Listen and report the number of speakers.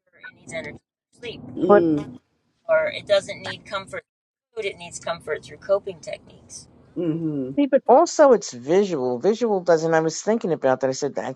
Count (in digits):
3